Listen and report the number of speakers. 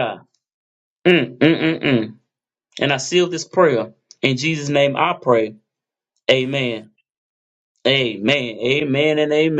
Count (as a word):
one